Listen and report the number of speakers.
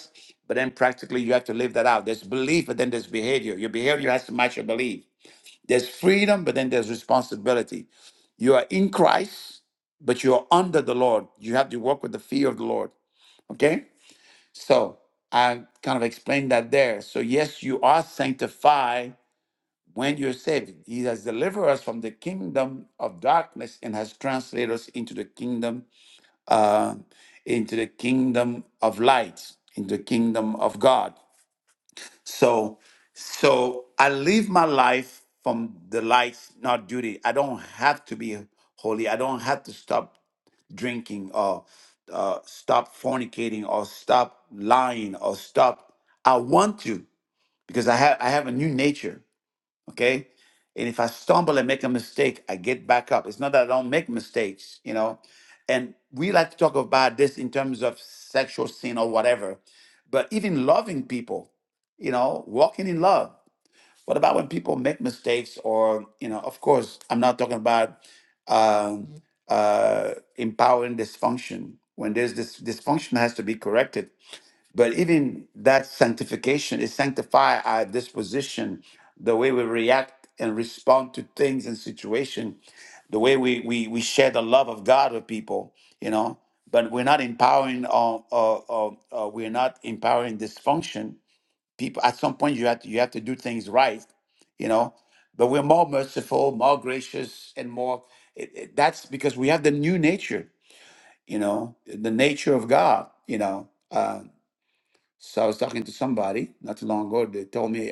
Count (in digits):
1